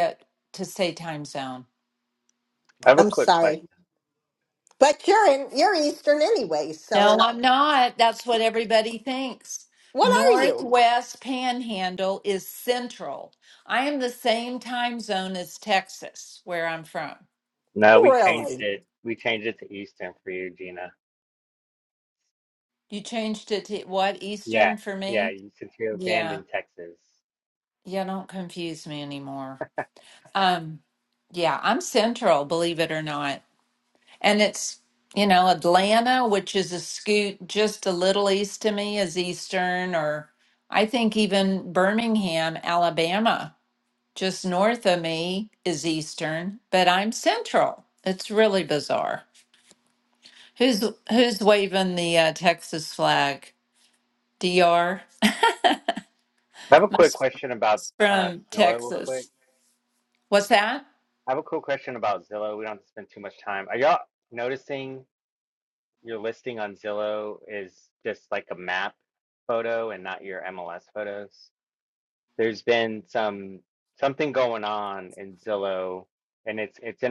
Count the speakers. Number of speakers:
3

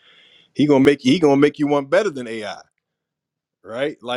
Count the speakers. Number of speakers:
1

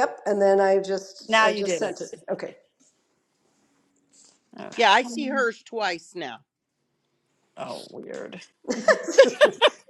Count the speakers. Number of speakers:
3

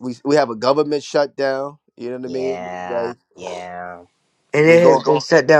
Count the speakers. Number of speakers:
3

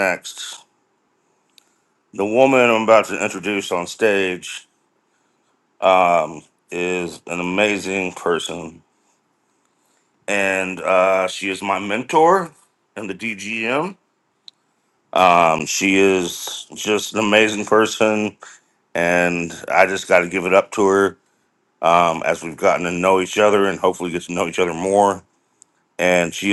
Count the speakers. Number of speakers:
1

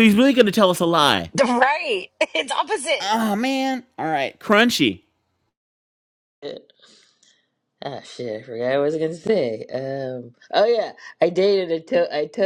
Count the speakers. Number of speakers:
3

